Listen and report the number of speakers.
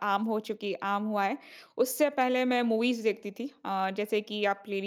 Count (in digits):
1